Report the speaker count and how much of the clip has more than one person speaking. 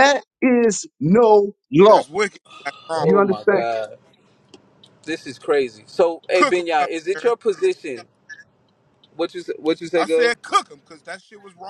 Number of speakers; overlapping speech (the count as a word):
three, about 19%